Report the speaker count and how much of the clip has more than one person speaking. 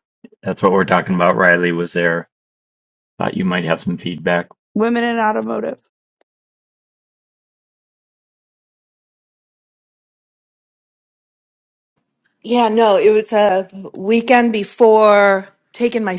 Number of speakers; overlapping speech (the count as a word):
three, no overlap